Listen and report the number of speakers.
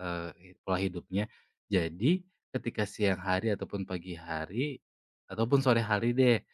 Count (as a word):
one